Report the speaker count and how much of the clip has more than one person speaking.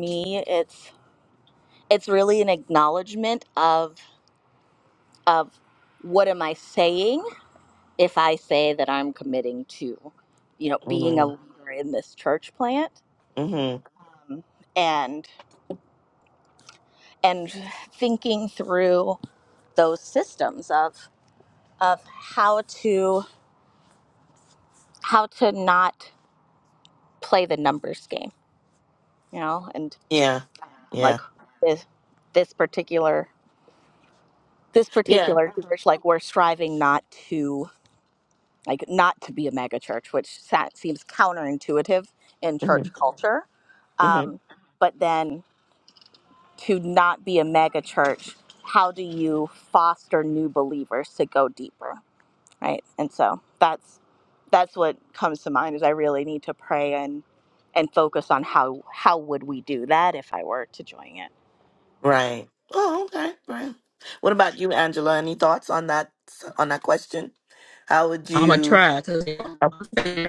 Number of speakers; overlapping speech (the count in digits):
3, about 3%